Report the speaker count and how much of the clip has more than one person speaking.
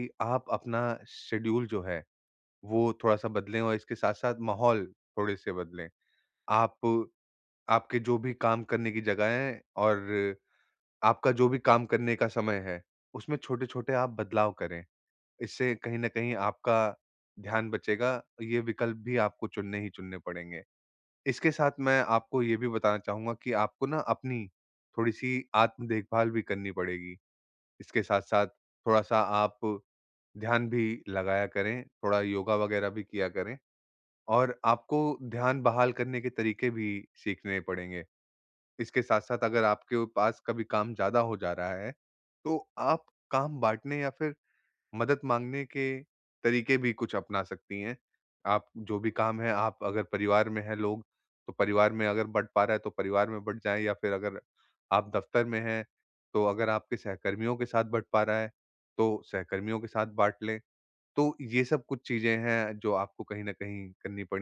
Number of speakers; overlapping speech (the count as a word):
one, no overlap